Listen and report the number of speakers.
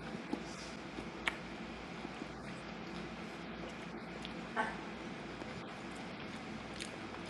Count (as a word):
zero